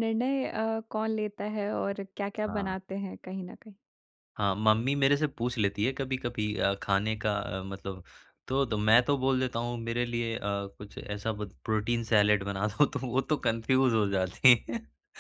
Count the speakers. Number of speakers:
2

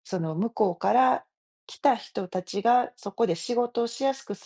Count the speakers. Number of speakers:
1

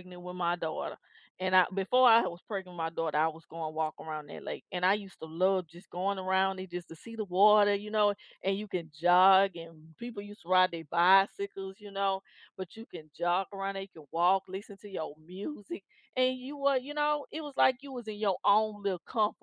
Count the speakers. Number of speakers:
1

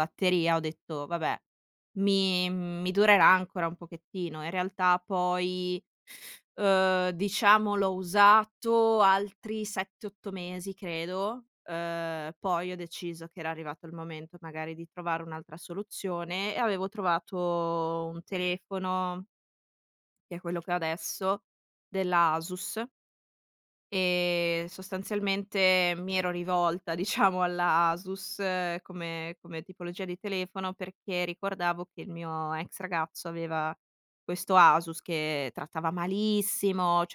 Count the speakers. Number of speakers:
1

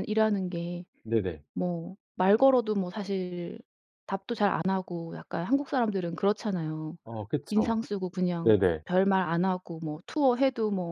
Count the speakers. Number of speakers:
2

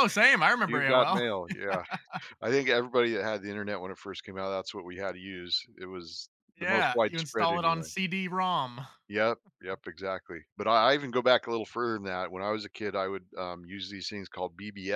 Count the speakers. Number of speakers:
2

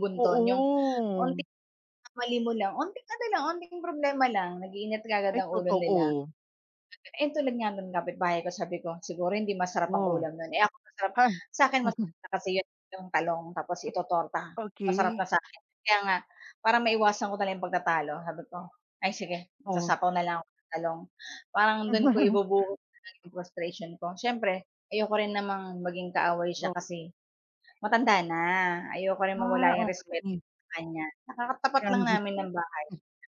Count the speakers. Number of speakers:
2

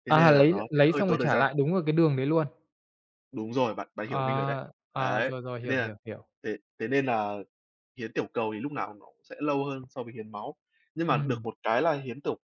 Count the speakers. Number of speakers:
2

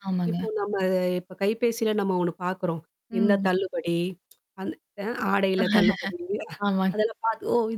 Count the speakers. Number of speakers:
2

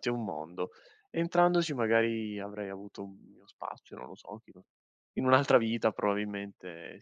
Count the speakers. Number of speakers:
1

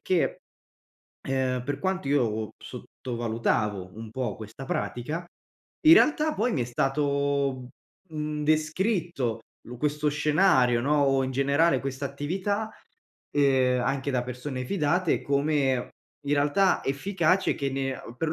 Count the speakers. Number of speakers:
1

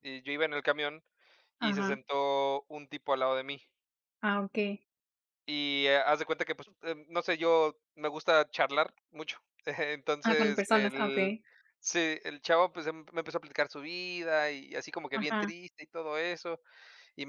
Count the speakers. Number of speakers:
2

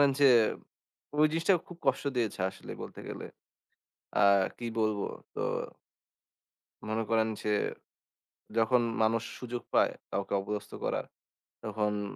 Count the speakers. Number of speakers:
1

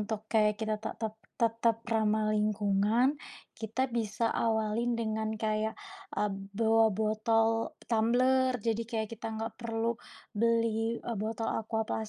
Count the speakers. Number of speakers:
1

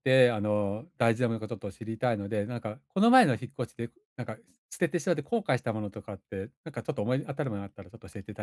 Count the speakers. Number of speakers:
1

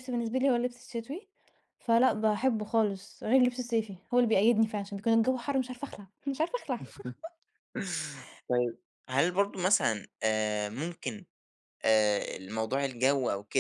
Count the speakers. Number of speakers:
2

